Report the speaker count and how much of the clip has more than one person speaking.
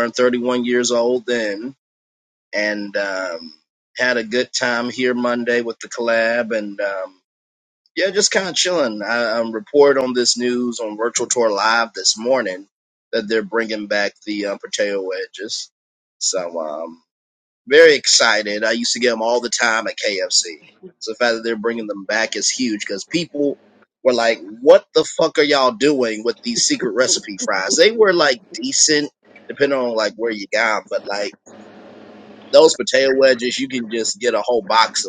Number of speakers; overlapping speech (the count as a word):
one, no overlap